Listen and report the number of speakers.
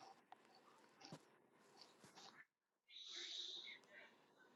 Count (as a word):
zero